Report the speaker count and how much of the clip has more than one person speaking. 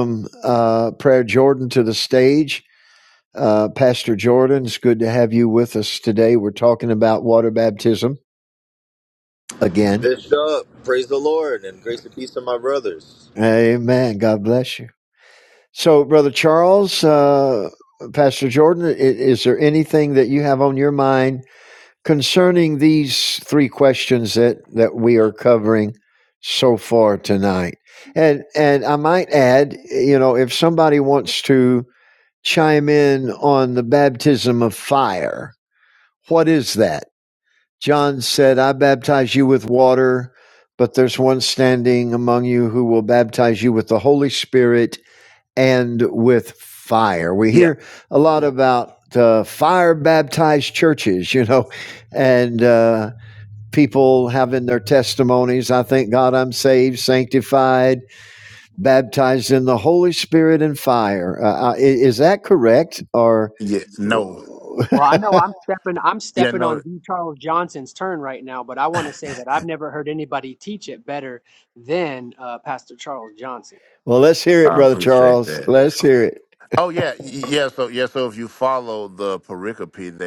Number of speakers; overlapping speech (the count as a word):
four, about 3%